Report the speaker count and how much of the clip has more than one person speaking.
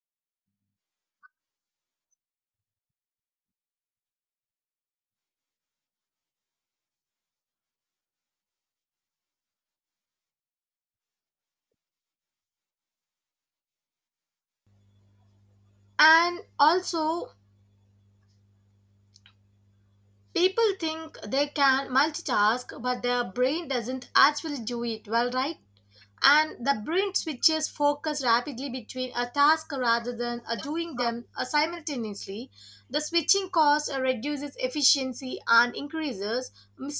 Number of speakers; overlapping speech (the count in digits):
1, no overlap